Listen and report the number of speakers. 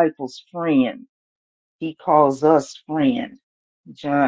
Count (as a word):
one